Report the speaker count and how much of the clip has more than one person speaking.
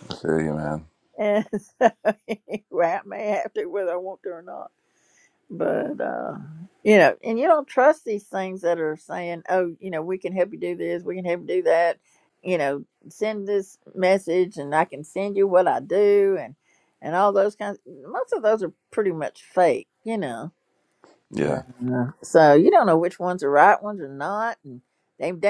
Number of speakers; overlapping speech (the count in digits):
2, about 1%